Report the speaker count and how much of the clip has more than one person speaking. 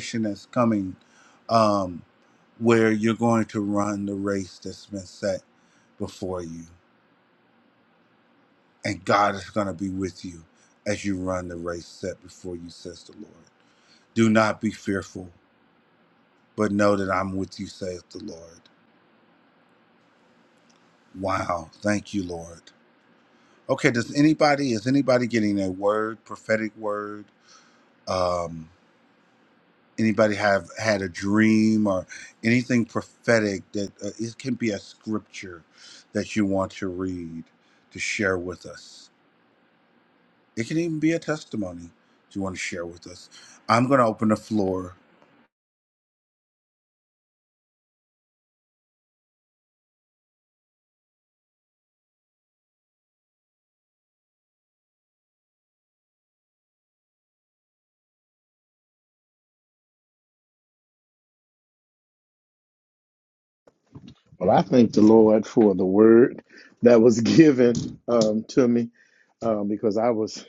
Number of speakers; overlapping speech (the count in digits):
2, no overlap